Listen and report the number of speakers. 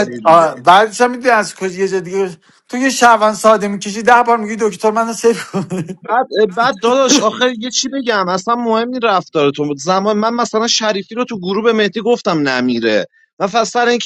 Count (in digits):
2